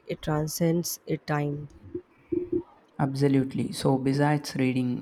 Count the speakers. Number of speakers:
two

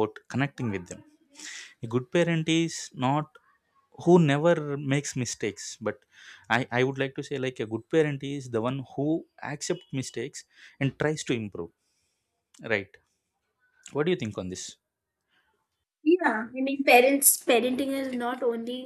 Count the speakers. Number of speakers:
two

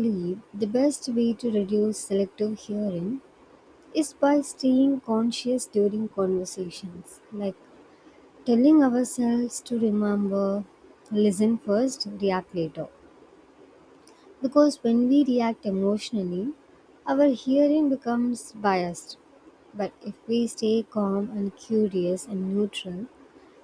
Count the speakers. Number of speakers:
one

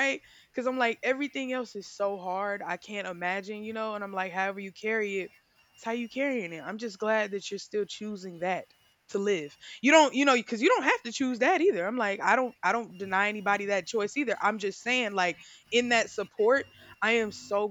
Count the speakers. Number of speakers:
one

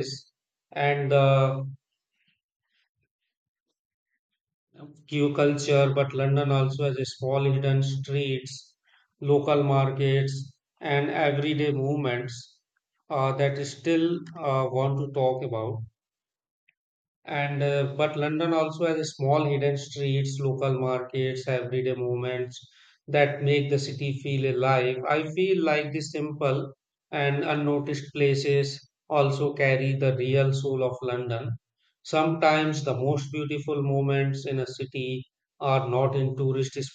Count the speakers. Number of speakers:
one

